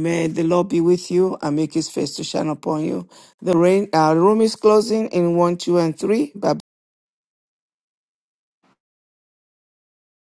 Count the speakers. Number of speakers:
one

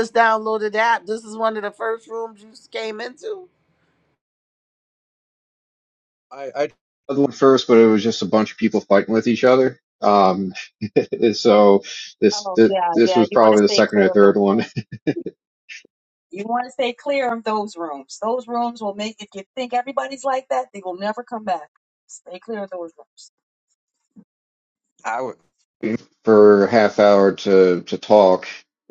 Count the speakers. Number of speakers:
three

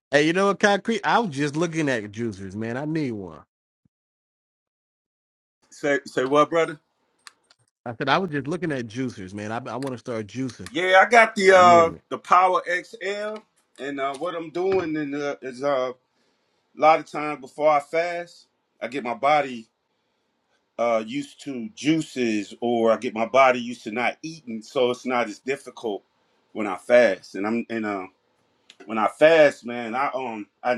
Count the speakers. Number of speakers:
two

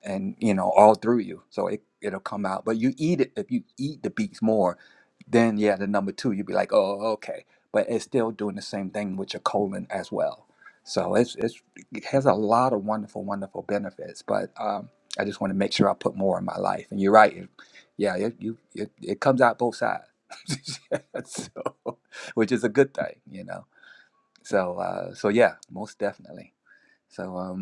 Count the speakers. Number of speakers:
one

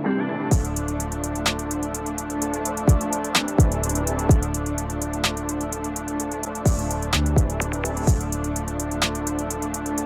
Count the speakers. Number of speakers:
zero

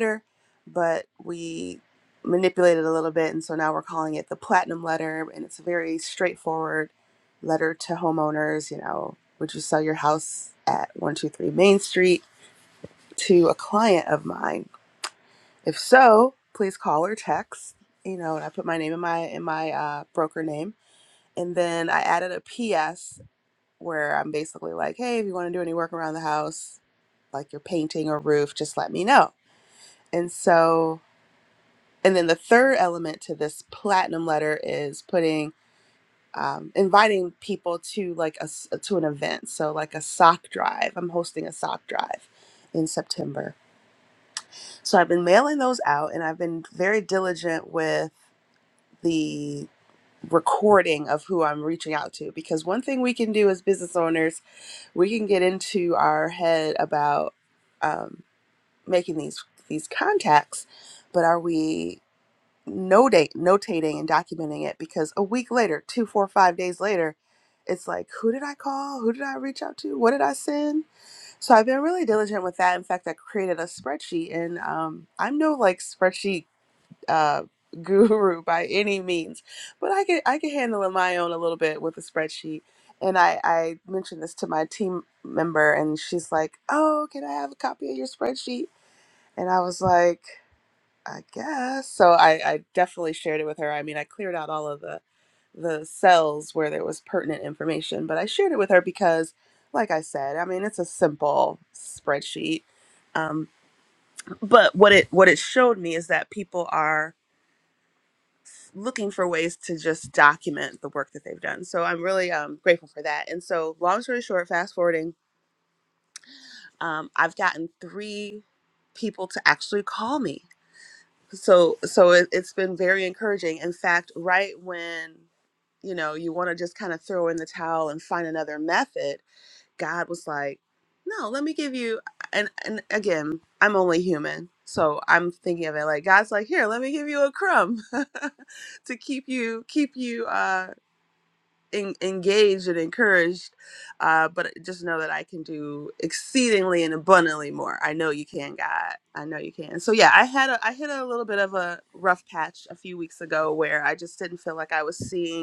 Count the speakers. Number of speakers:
one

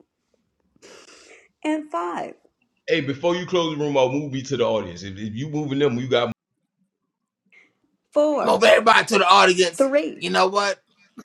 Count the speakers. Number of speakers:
three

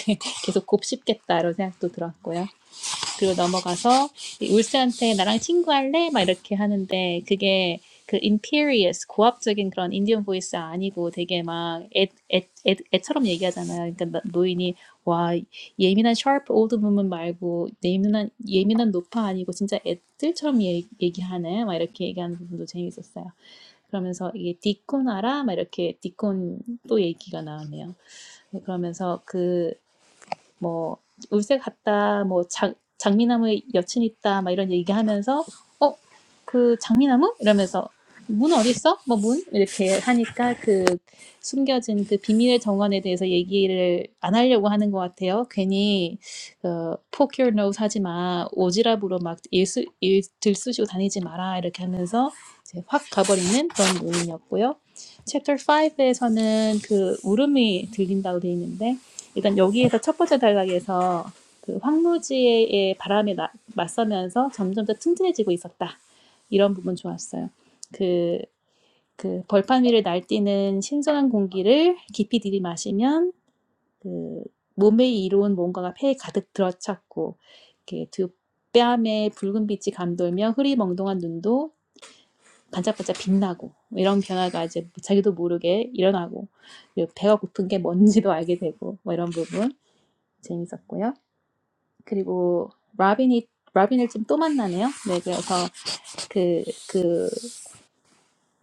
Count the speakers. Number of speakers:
one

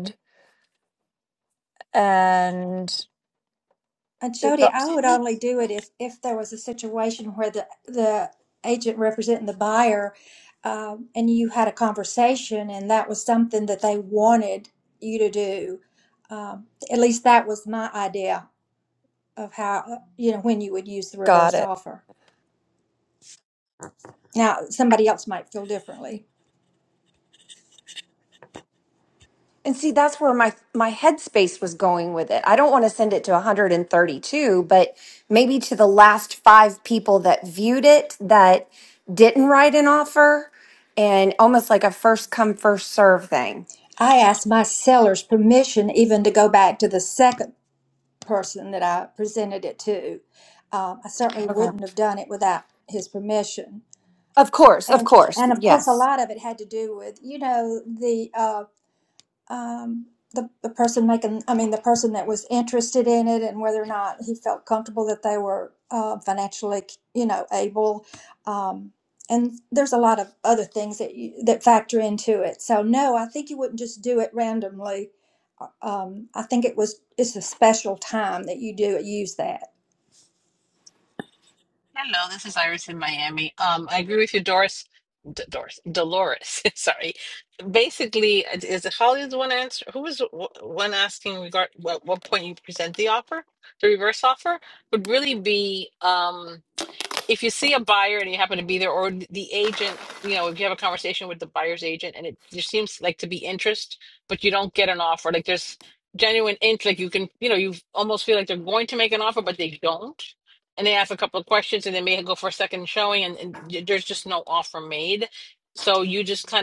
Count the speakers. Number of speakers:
four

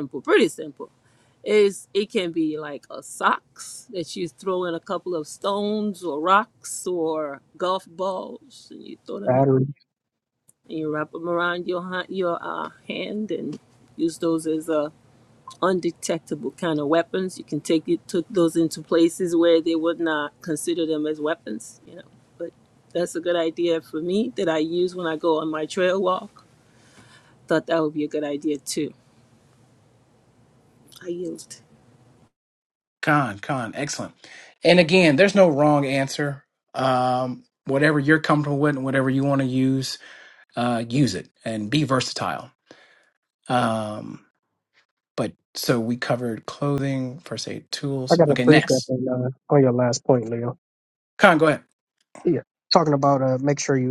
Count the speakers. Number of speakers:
three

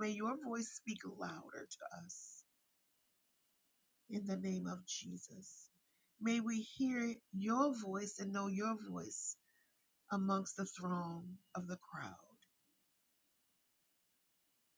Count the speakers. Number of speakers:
one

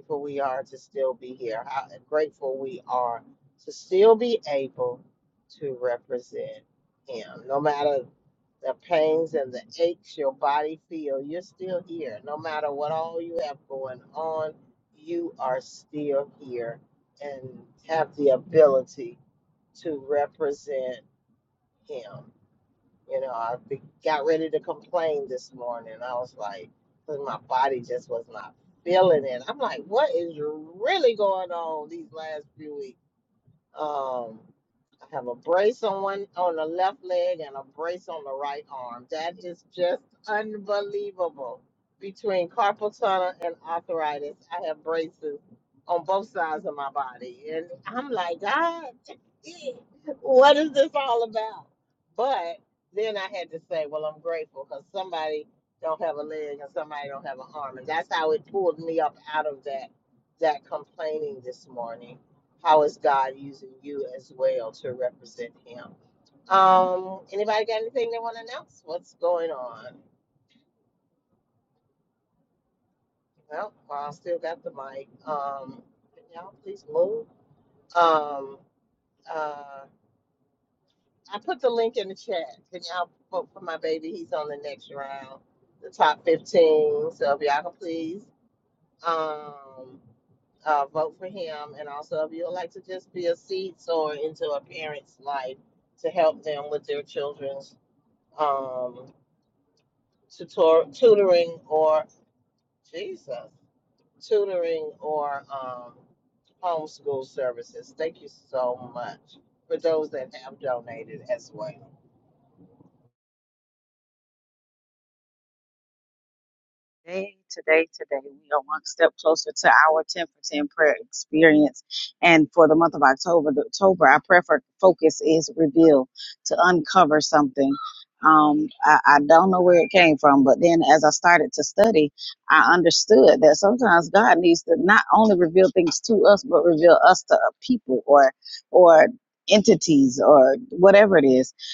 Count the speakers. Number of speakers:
two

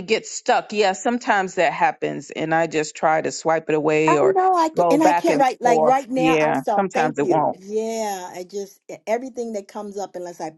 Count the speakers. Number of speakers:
two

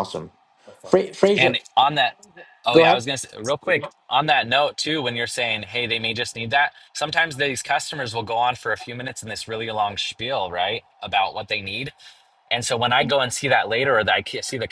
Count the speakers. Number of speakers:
two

